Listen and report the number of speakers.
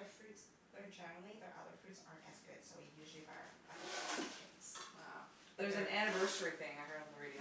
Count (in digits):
2